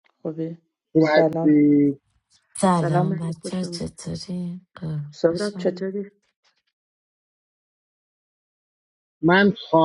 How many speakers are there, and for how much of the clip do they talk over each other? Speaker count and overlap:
3, about 17%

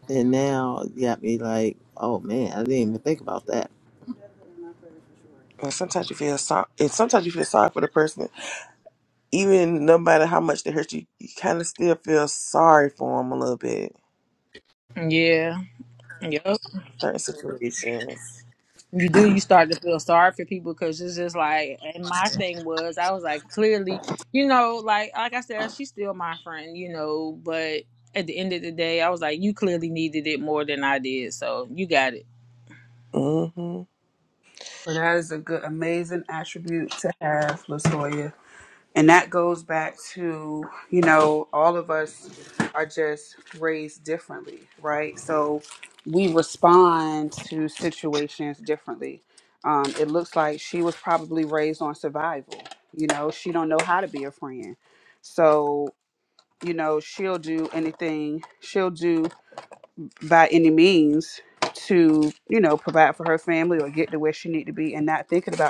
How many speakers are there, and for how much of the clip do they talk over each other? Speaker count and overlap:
4, no overlap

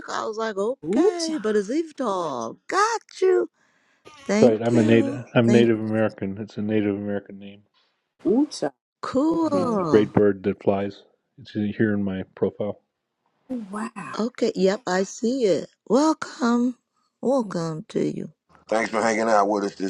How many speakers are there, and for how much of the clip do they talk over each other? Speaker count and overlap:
4, about 11%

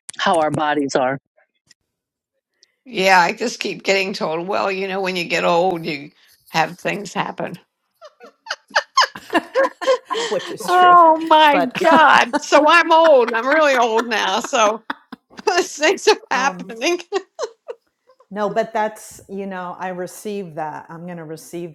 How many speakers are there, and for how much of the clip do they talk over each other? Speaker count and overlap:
3, about 5%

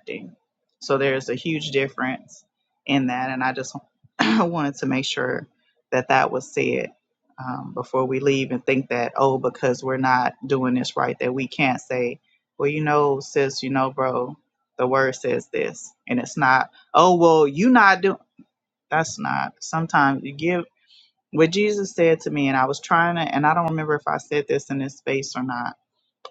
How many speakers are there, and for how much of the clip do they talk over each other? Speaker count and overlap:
1, no overlap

